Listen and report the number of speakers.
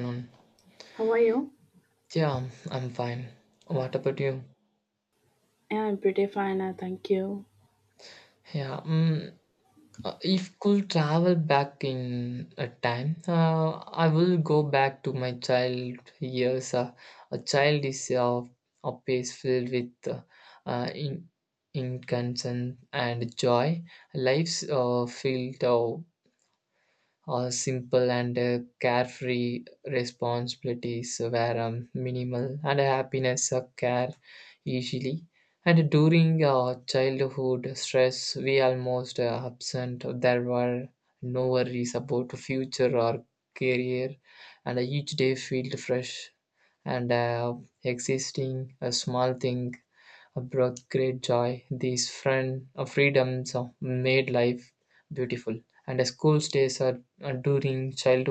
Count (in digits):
2